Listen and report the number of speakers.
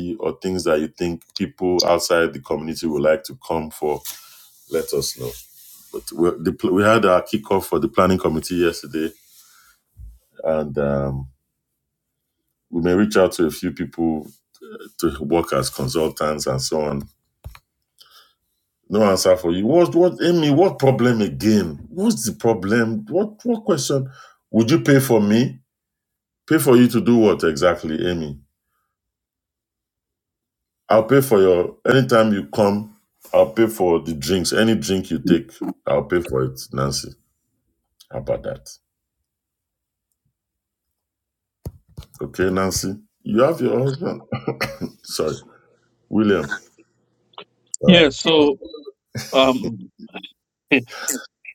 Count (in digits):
2